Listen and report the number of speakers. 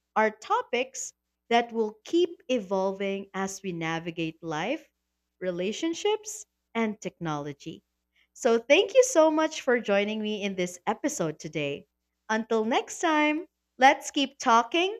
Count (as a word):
one